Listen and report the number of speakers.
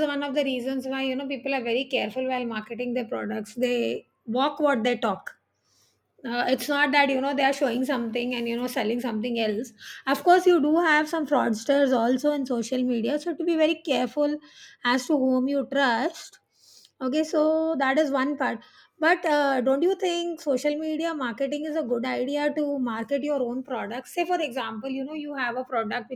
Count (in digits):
1